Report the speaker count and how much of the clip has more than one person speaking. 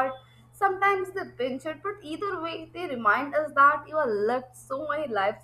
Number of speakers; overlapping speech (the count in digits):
1, no overlap